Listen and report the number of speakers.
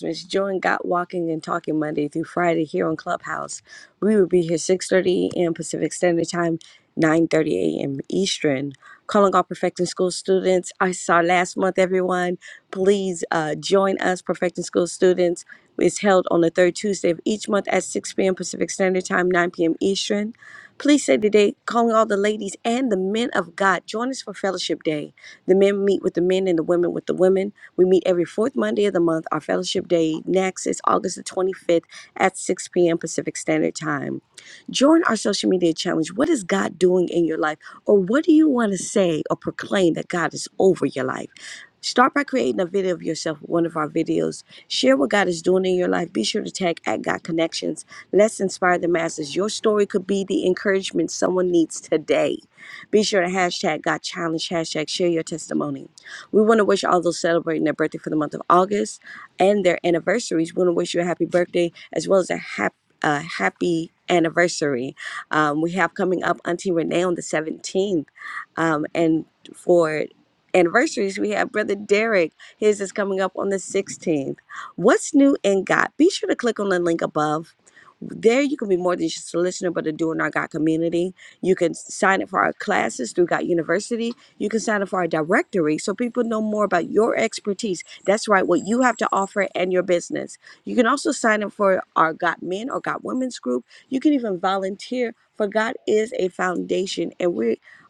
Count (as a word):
one